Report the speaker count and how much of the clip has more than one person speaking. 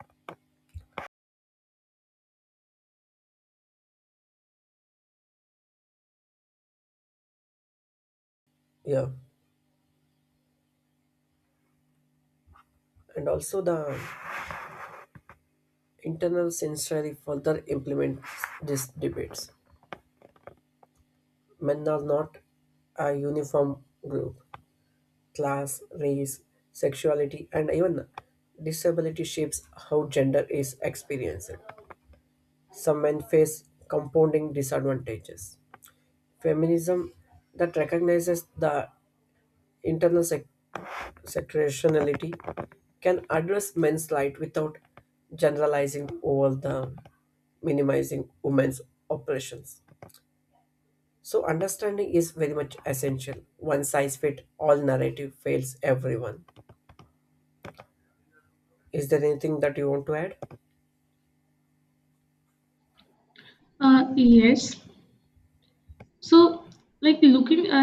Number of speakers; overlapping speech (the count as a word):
two, no overlap